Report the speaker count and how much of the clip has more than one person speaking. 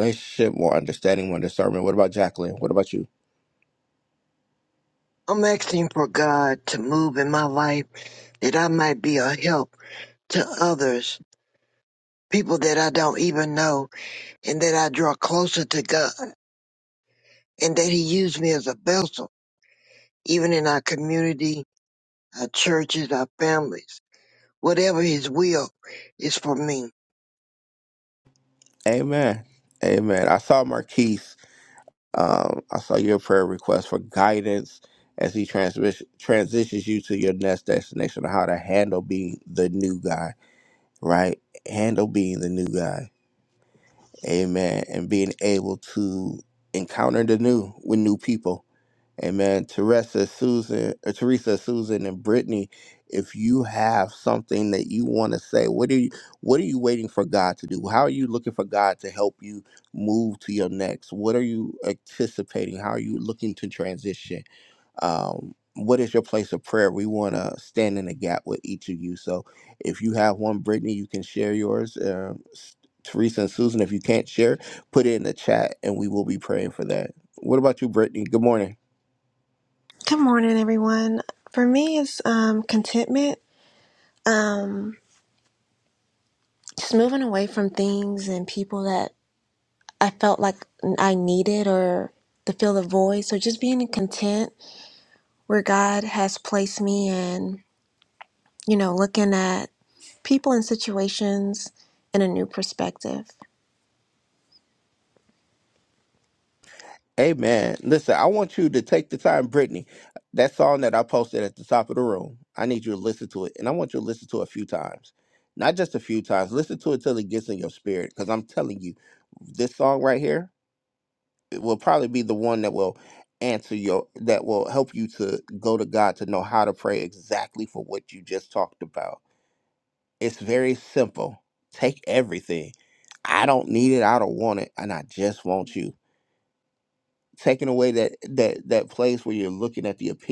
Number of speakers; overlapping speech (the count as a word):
three, no overlap